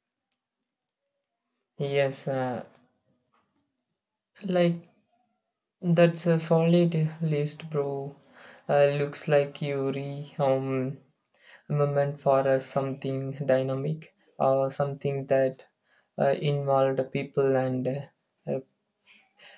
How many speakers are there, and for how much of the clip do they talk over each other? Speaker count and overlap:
1, no overlap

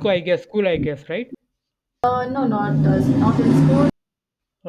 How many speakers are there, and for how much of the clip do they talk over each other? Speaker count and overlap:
2, no overlap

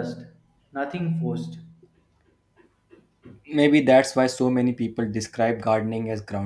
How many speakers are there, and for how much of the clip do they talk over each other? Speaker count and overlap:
2, no overlap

